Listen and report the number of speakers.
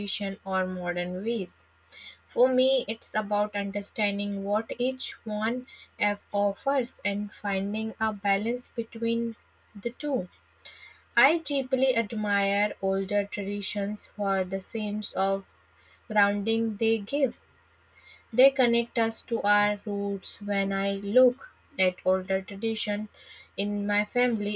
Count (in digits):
1